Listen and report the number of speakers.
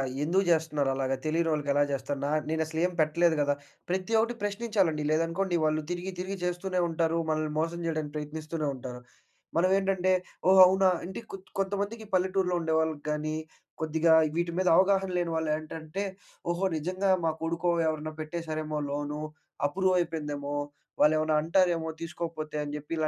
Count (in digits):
1